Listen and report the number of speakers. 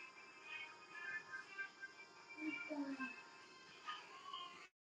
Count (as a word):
zero